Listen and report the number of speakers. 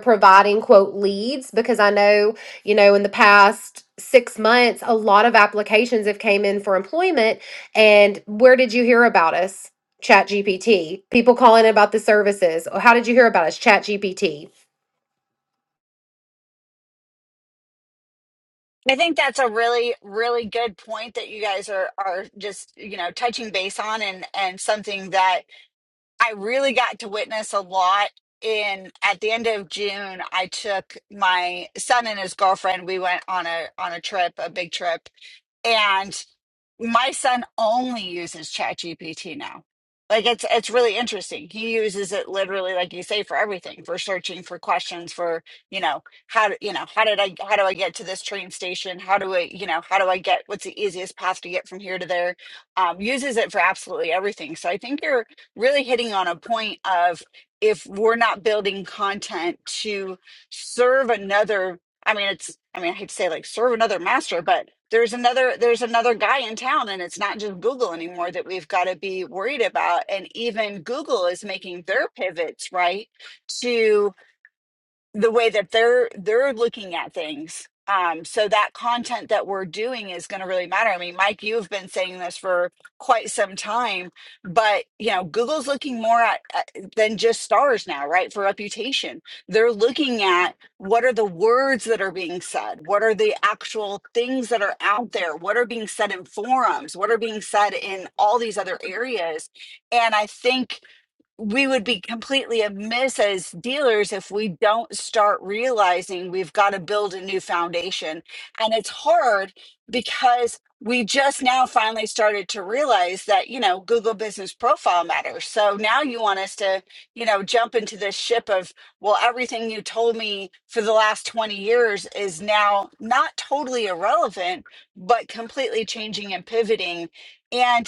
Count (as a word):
two